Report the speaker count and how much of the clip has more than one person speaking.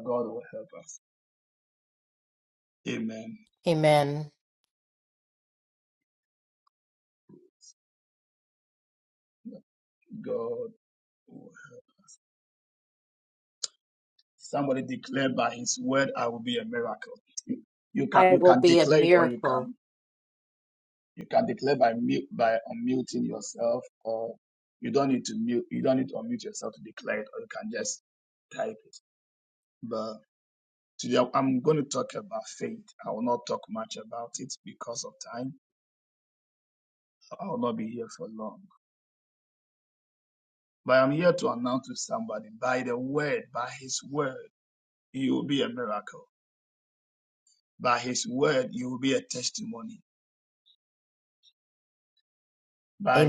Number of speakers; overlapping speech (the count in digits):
2, about 3%